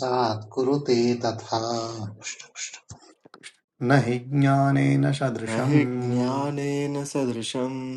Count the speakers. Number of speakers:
three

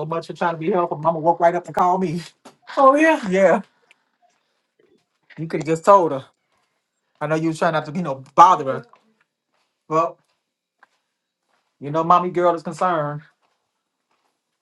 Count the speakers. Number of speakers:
one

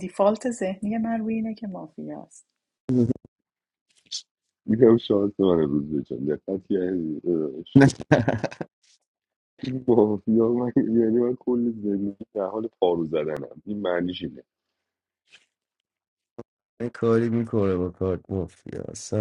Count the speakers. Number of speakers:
three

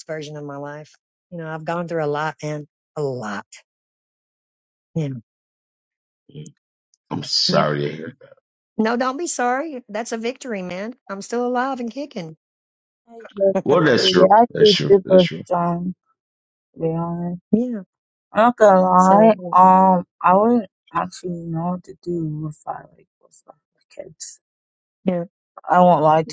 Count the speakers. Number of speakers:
three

